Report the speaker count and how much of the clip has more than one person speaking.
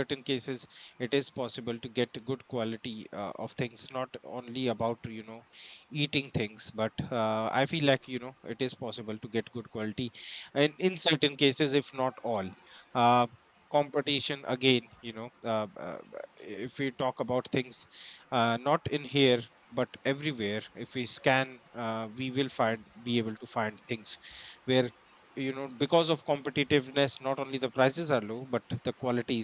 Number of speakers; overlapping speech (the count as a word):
one, no overlap